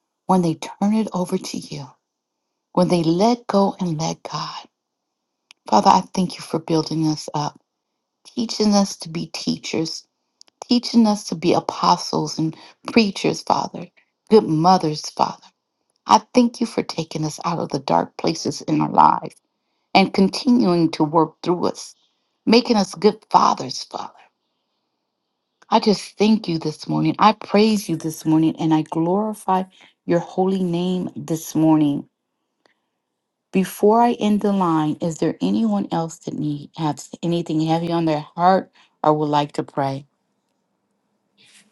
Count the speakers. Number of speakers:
one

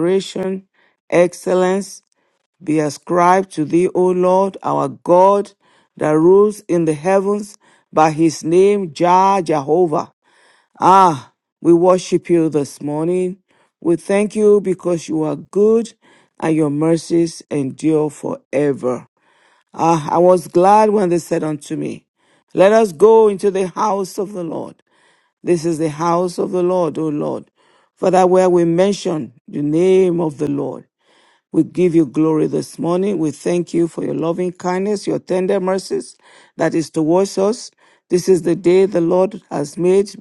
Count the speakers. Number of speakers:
one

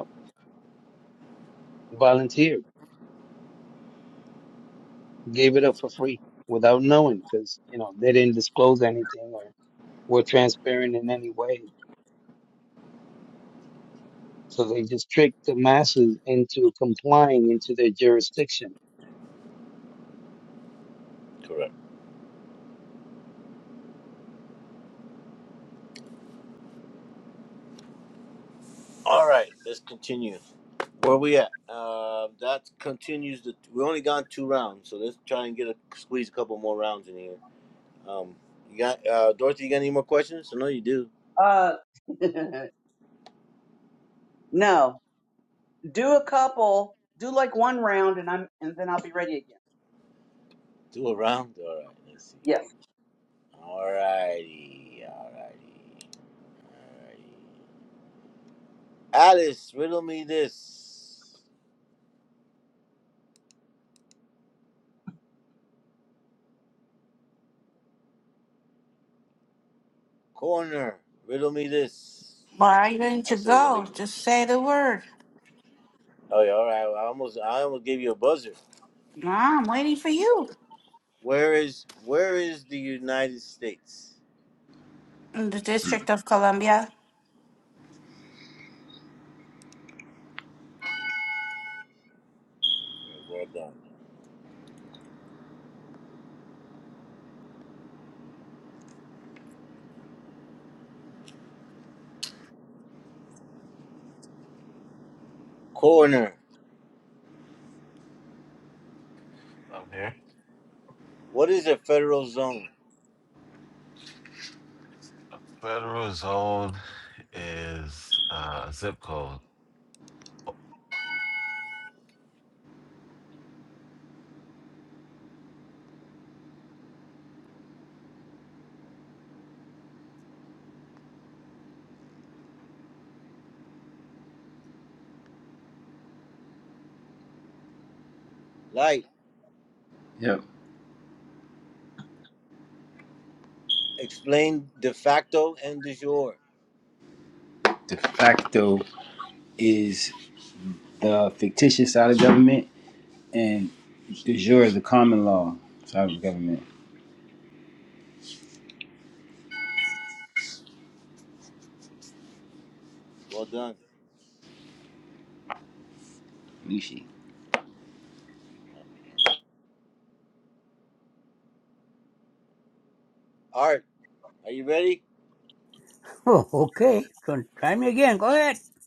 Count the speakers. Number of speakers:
seven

